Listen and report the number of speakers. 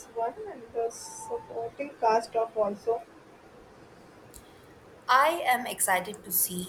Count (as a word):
two